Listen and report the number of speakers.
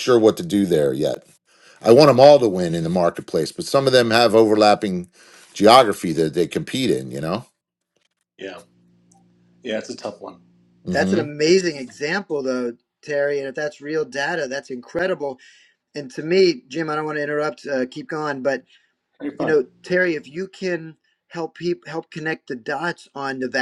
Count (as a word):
three